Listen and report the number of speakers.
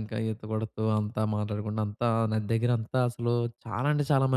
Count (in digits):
1